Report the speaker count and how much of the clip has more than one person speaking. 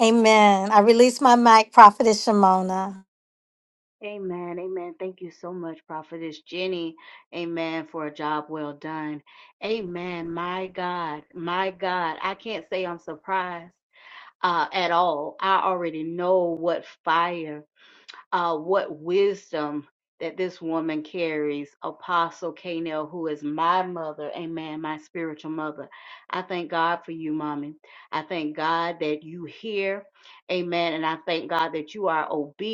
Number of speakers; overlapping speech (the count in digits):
2, no overlap